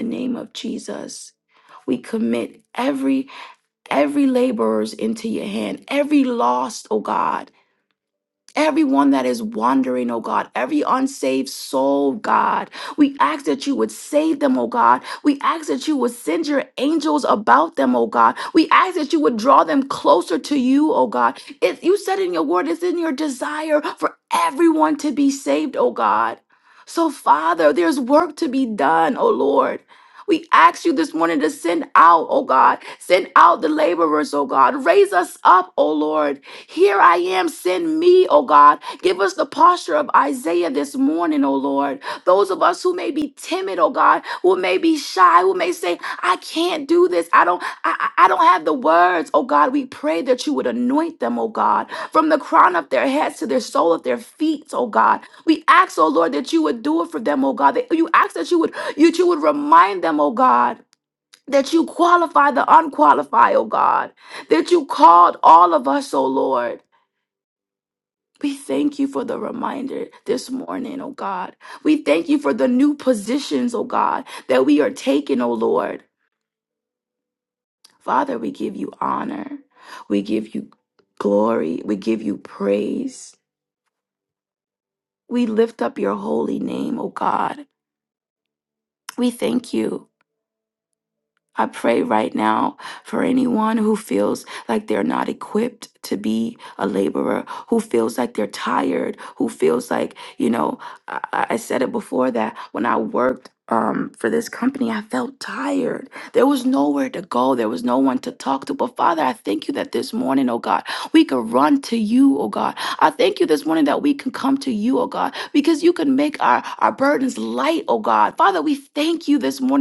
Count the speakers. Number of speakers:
1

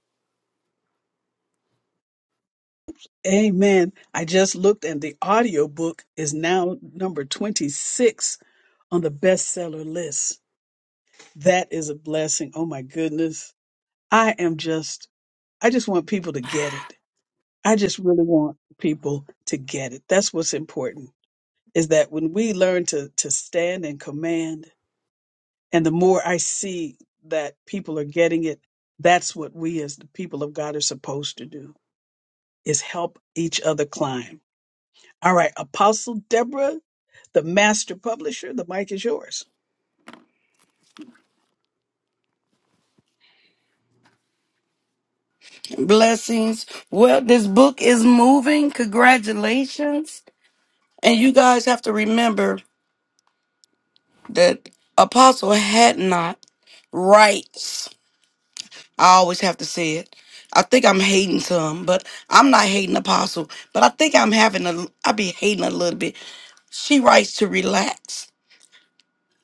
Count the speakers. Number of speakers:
2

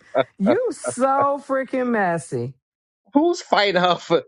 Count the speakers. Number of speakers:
2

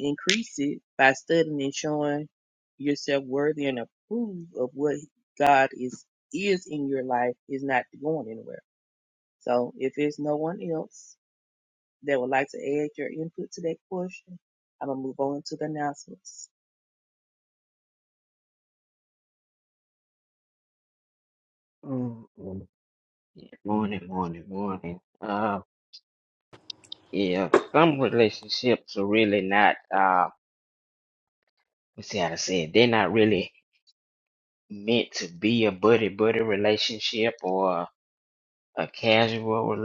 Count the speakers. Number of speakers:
2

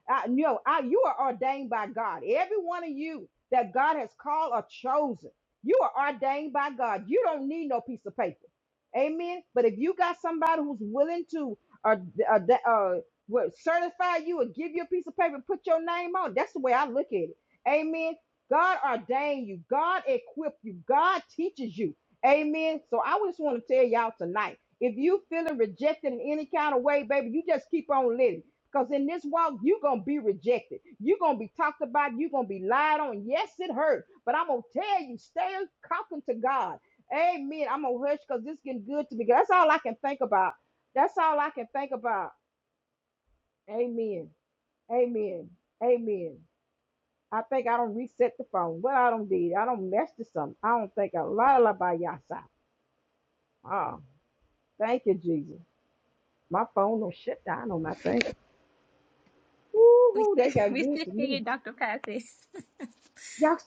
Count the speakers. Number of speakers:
2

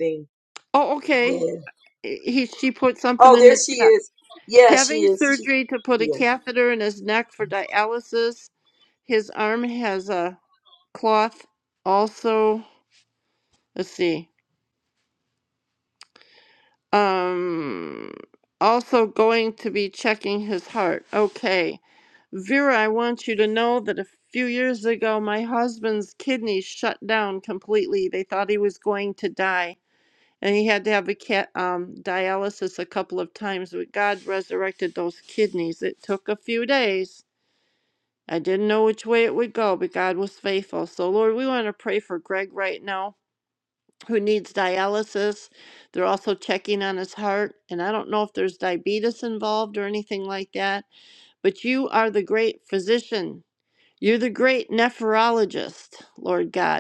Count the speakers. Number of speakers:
2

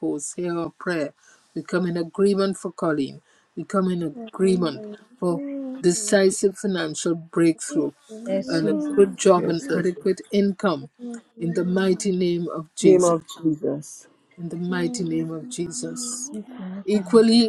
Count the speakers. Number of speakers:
3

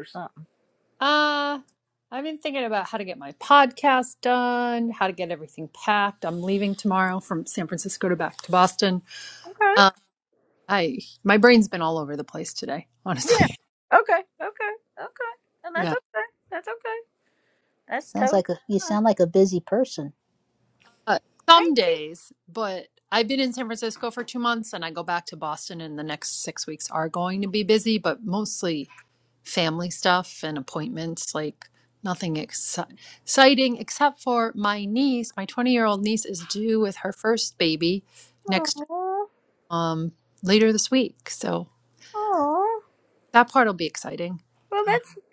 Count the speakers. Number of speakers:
3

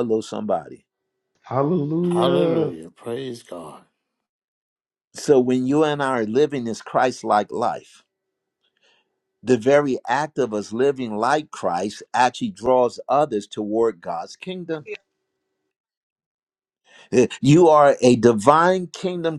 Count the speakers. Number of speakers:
3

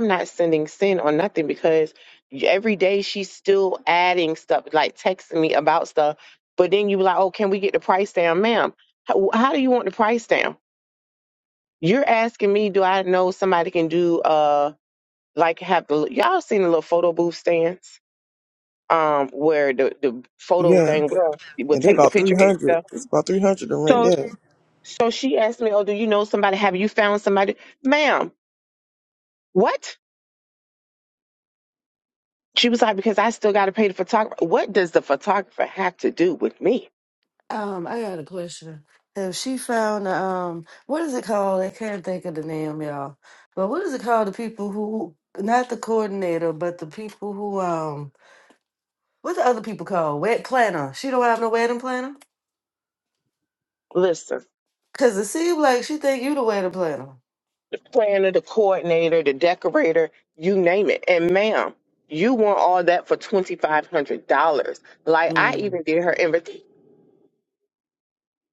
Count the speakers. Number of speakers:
3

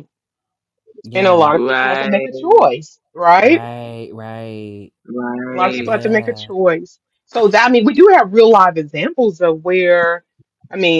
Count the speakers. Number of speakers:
3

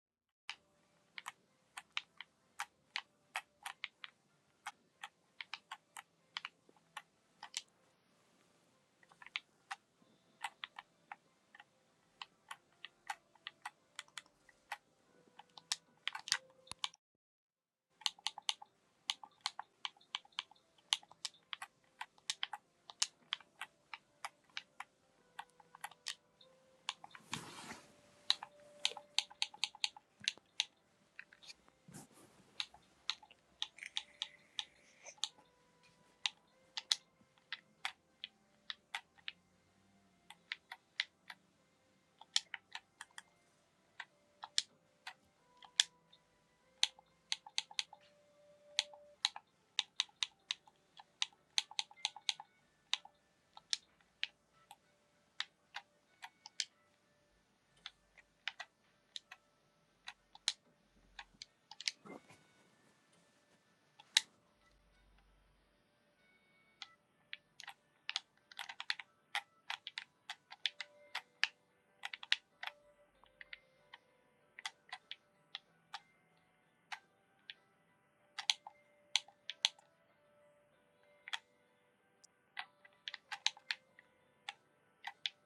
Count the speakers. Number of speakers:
0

